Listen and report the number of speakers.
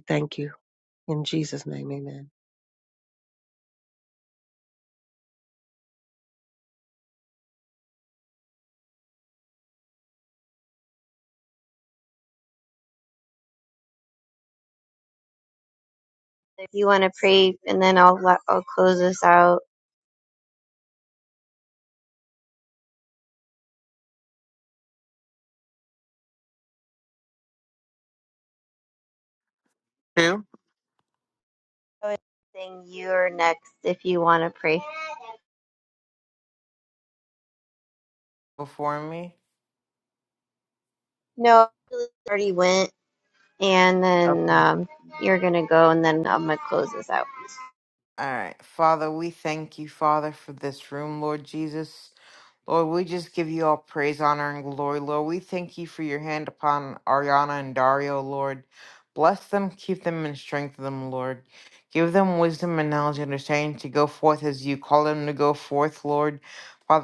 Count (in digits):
3